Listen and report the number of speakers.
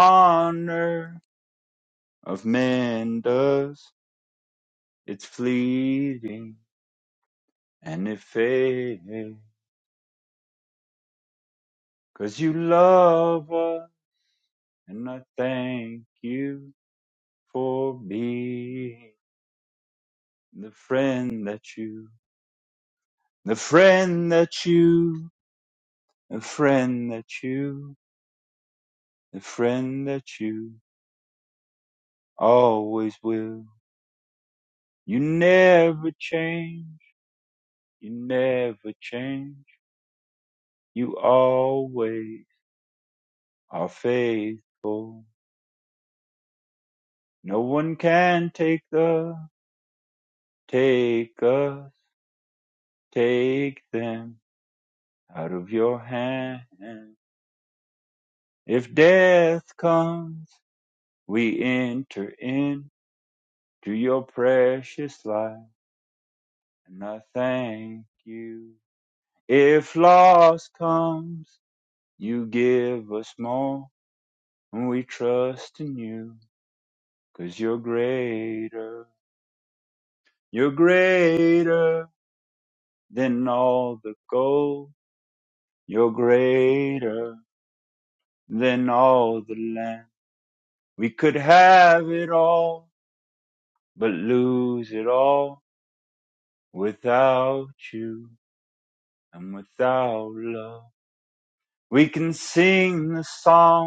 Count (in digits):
1